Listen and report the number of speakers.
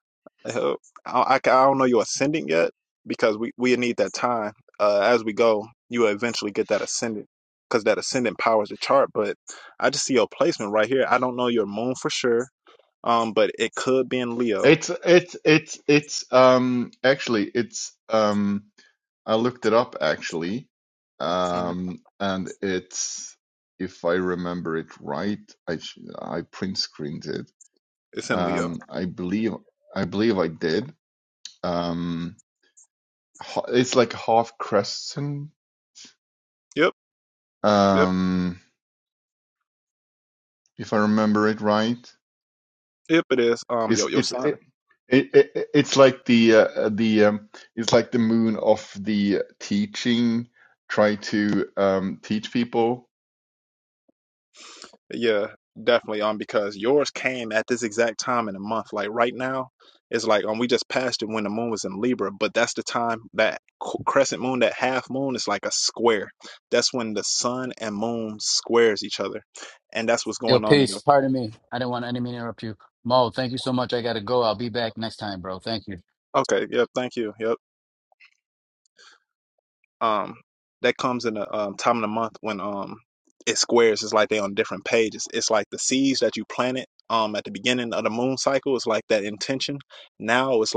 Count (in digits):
3